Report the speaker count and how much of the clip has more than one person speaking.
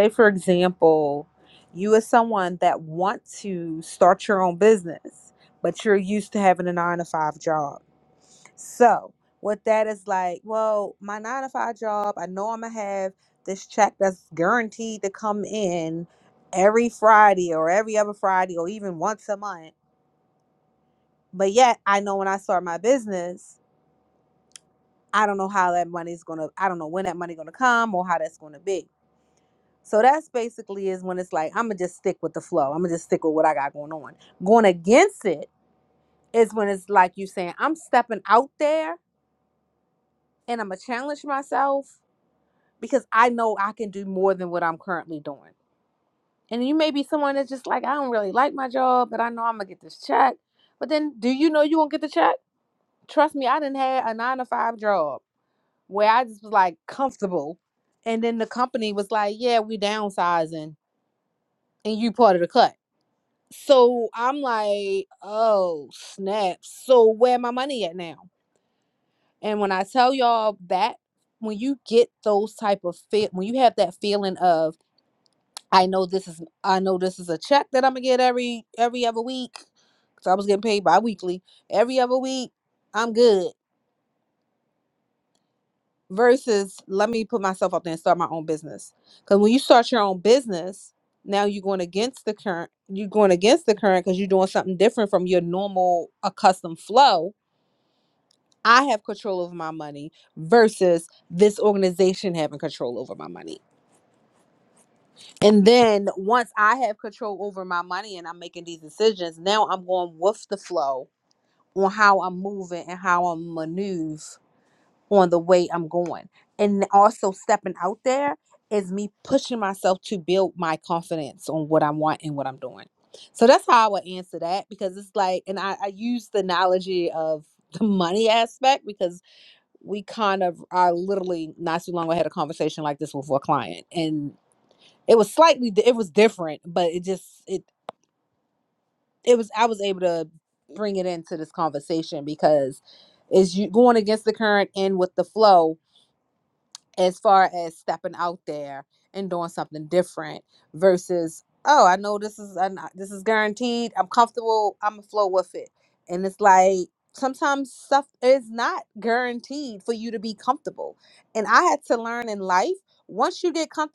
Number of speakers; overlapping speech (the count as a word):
one, no overlap